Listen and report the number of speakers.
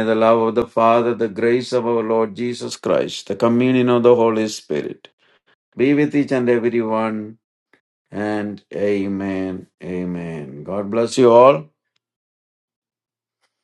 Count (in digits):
1